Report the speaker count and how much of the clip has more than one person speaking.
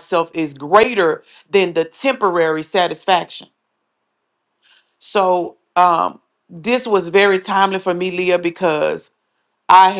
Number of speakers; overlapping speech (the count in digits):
1, no overlap